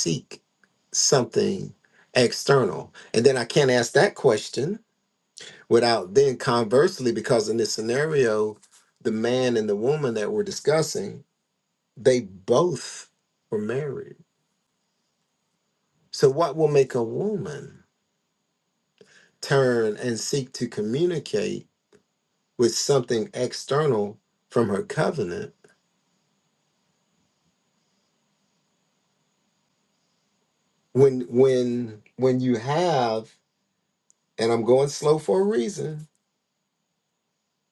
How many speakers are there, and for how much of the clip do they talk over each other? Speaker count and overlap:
one, no overlap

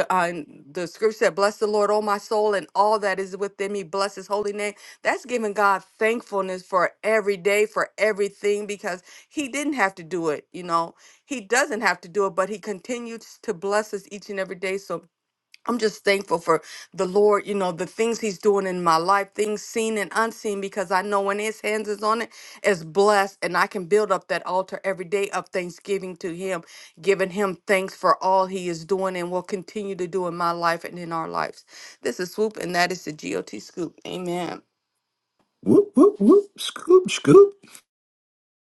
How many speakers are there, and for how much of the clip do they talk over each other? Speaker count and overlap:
two, no overlap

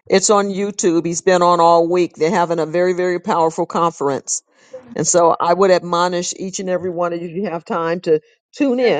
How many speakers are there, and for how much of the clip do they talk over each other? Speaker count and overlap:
one, no overlap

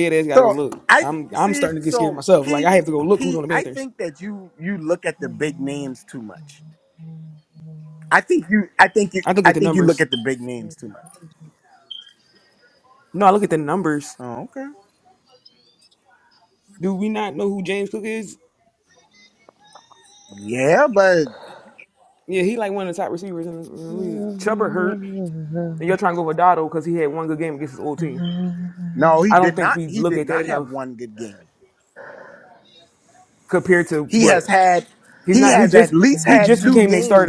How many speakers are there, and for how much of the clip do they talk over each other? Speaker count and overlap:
two, about 20%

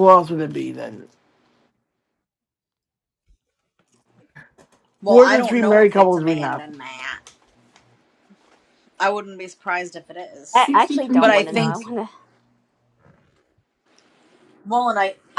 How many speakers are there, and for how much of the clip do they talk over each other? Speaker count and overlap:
three, about 14%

